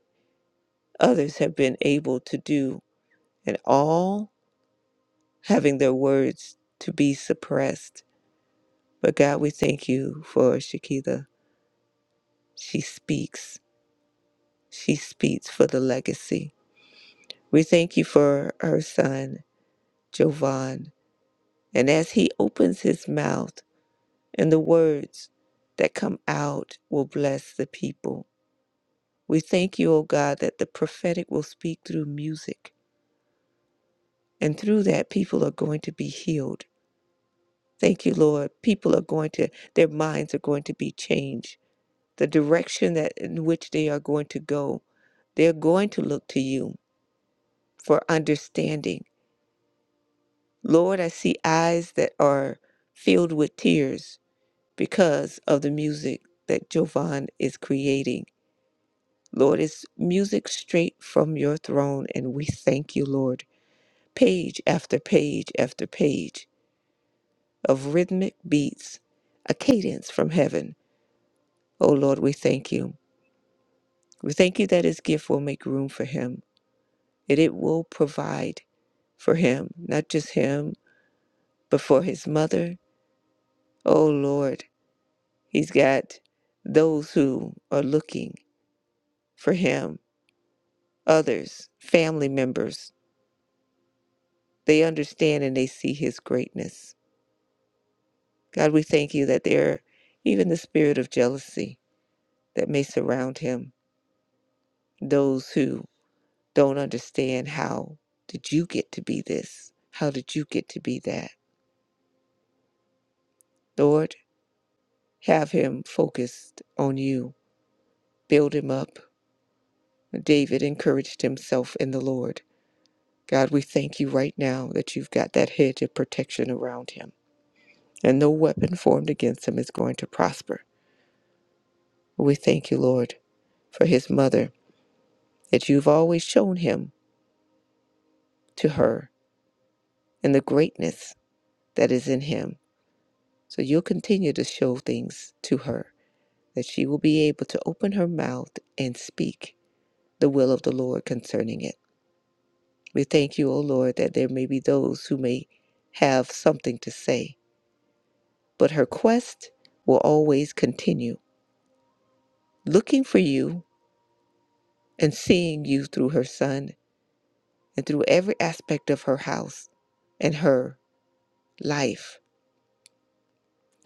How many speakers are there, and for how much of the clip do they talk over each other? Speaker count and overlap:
one, no overlap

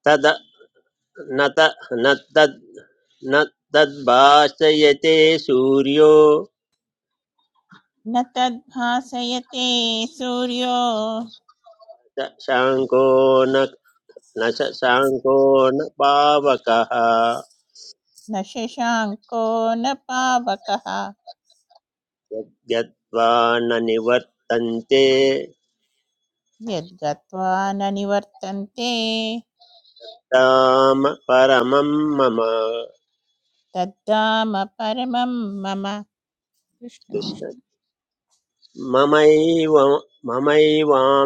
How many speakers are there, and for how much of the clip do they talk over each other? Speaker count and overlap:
two, about 1%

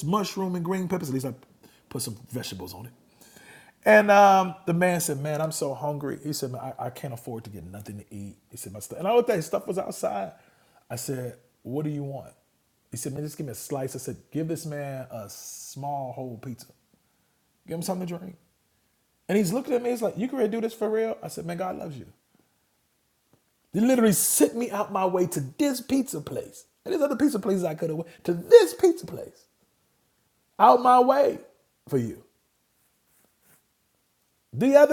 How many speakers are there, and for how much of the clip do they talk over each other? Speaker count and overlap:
one, no overlap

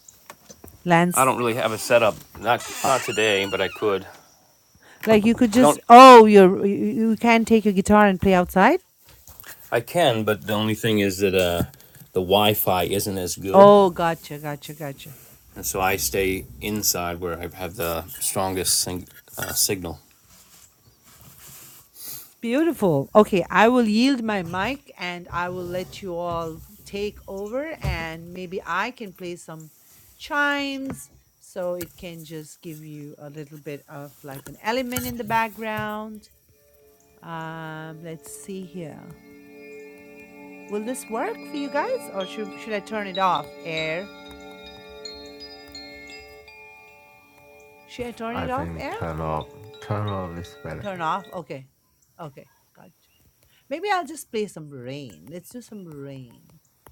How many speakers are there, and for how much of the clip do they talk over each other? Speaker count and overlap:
three, about 3%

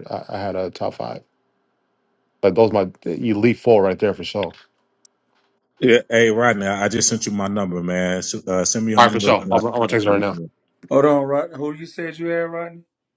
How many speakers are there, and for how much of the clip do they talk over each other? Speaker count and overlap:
three, about 10%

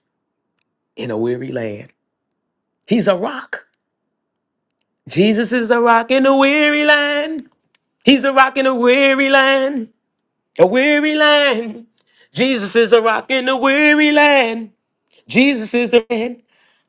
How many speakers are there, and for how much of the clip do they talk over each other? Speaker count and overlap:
one, no overlap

